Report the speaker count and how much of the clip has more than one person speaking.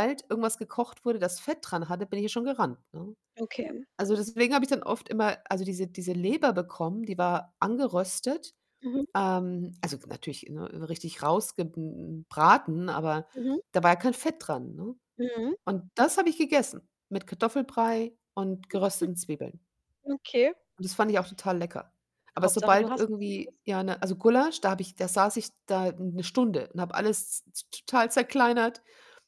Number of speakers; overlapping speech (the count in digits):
2, about 3%